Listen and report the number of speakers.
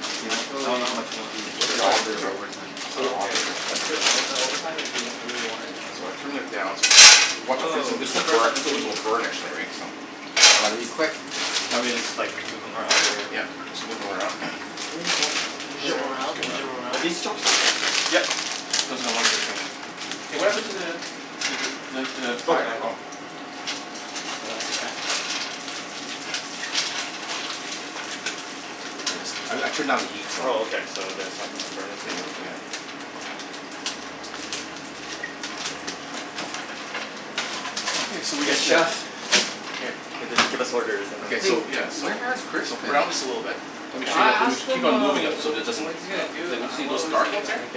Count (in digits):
4